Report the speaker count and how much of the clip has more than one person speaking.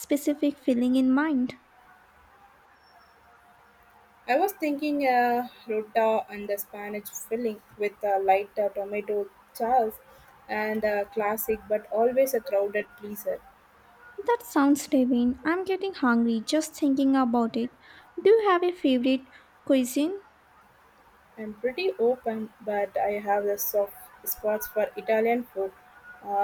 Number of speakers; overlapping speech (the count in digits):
2, no overlap